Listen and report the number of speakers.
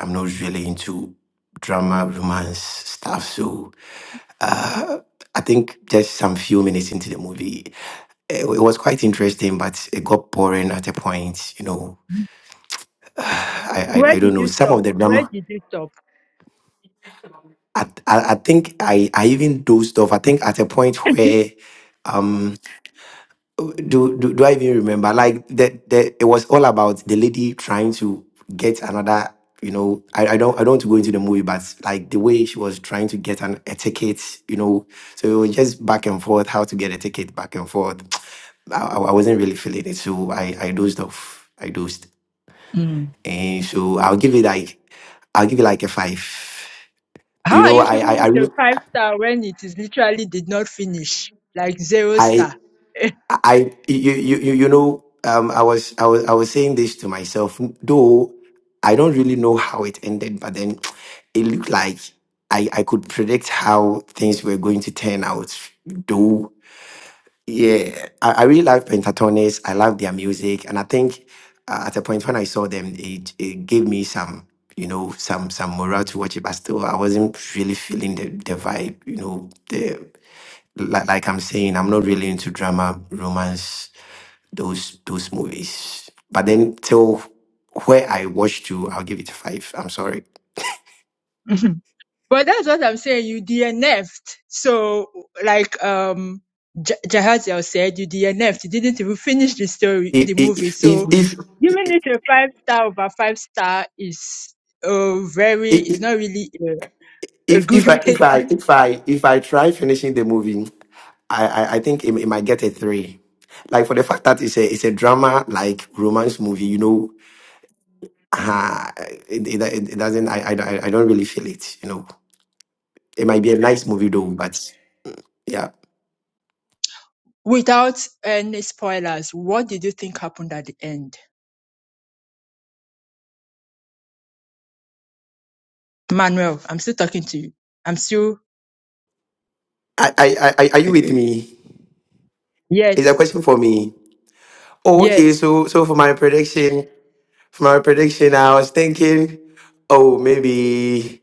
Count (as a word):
two